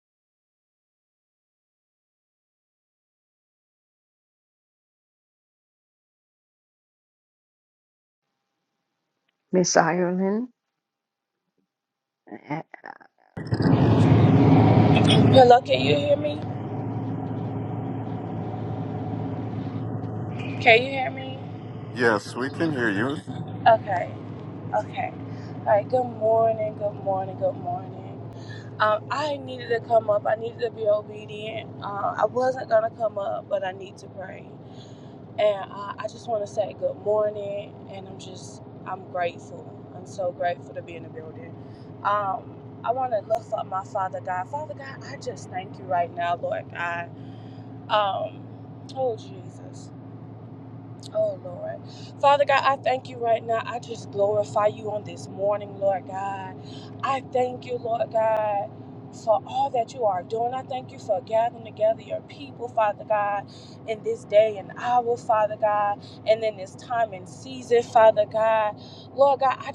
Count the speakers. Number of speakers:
3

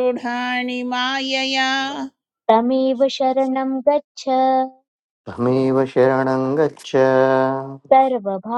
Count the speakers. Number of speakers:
3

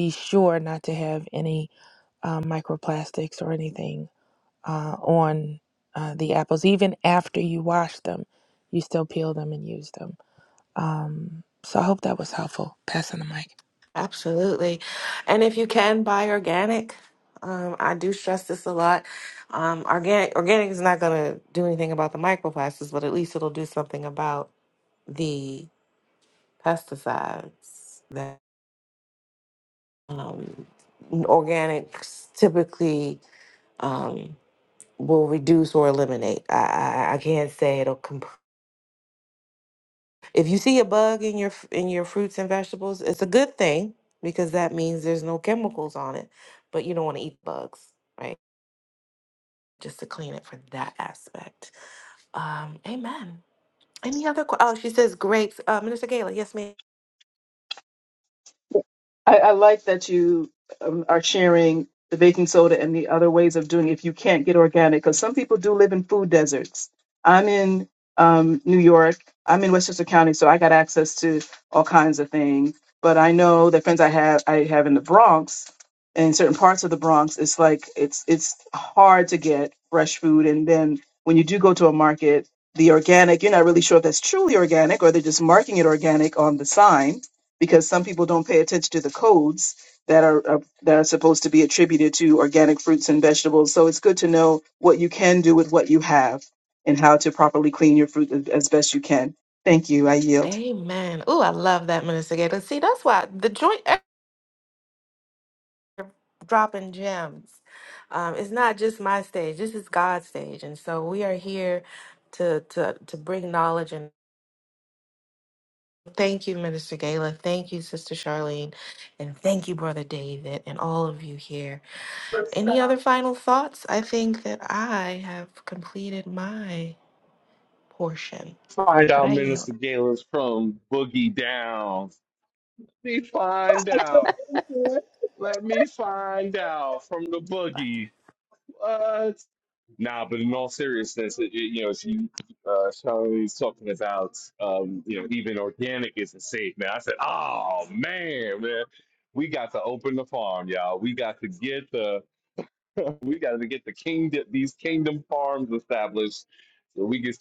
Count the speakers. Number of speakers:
4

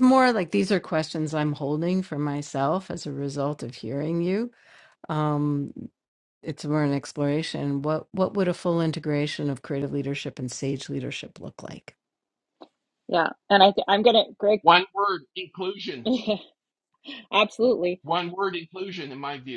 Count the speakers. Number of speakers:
3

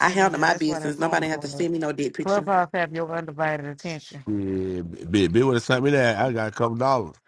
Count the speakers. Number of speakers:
3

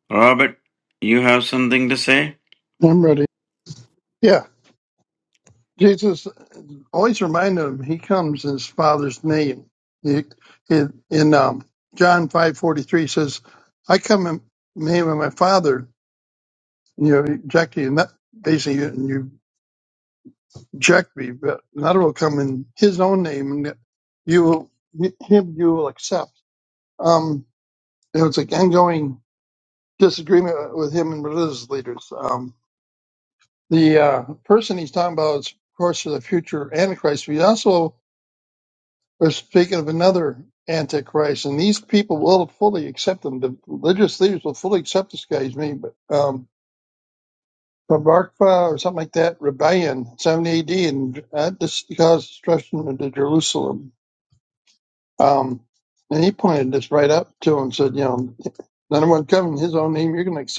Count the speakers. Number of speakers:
2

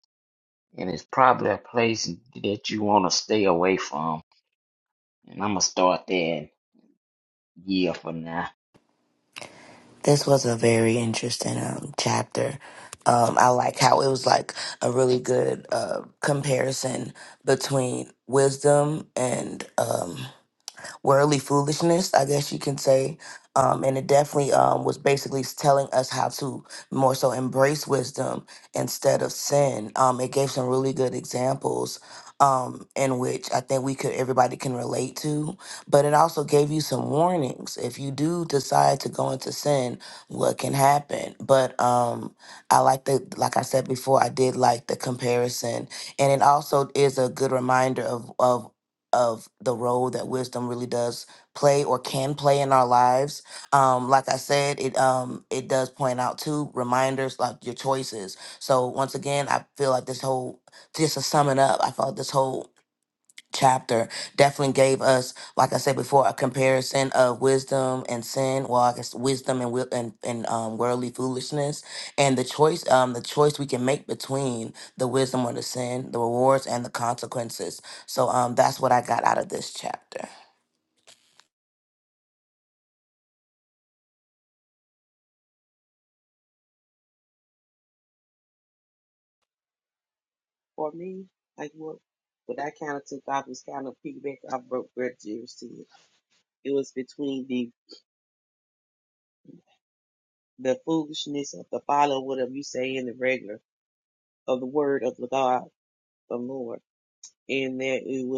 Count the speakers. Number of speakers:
3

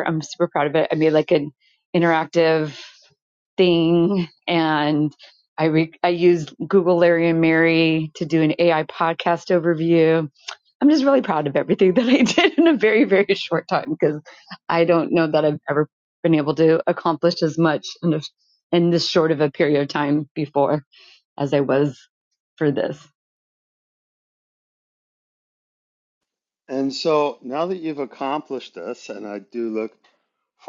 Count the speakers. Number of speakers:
2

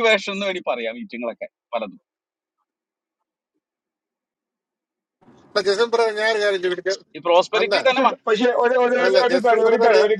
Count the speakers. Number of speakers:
3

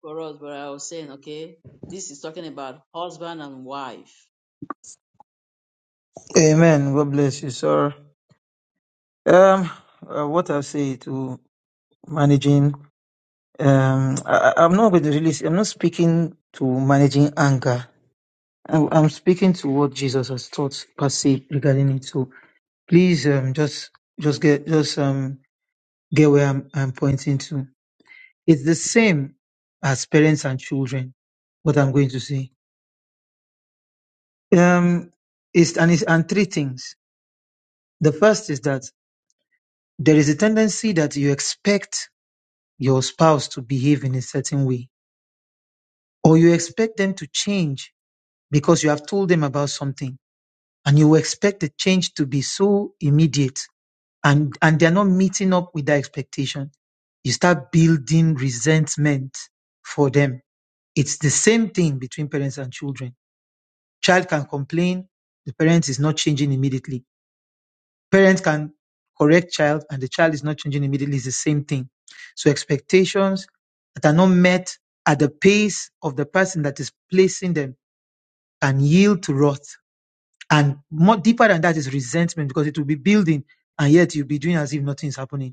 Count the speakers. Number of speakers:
2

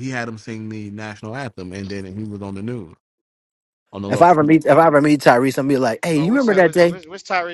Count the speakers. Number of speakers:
3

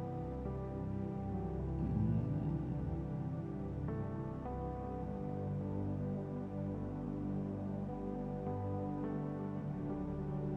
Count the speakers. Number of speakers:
0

